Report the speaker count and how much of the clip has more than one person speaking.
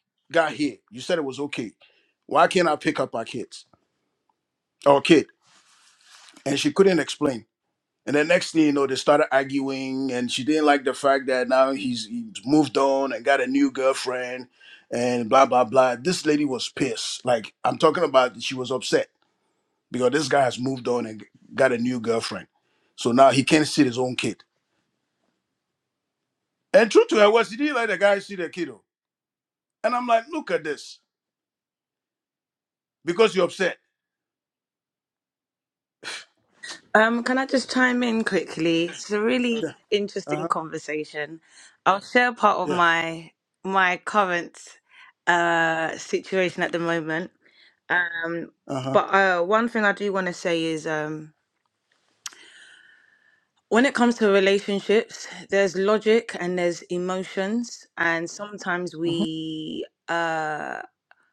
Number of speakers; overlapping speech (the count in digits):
2, about 1%